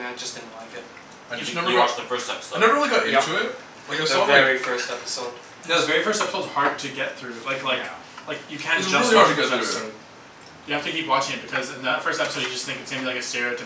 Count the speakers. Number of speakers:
4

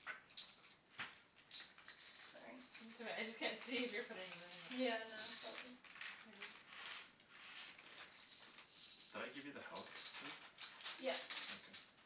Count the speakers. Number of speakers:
3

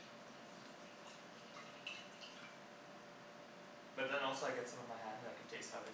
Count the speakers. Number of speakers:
1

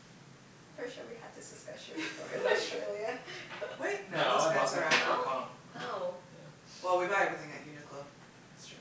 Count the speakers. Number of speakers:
3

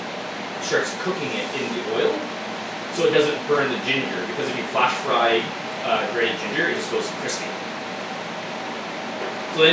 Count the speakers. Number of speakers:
1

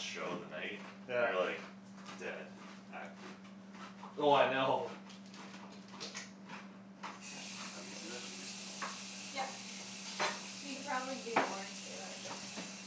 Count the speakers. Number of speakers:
3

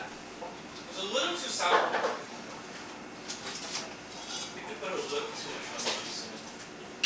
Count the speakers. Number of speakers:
1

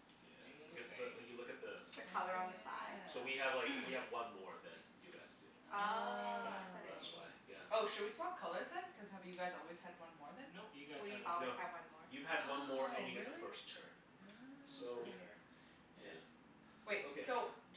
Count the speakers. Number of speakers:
4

